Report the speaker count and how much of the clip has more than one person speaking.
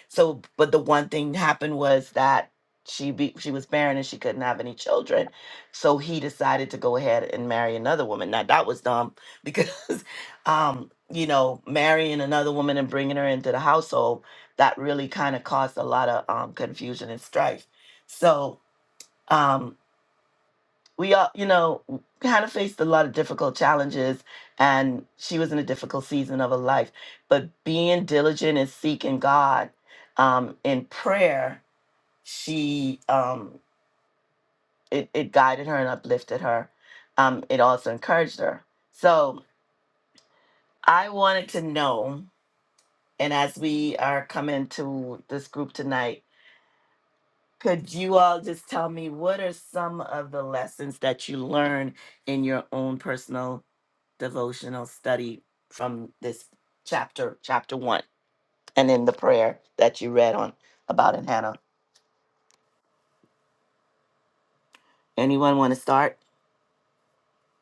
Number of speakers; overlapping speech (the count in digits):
1, no overlap